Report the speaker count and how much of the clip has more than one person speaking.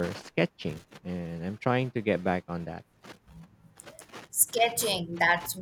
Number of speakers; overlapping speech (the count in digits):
2, no overlap